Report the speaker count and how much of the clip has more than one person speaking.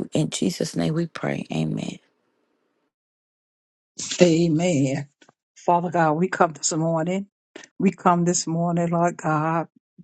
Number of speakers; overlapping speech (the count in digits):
2, no overlap